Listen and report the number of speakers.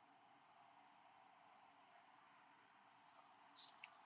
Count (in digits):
0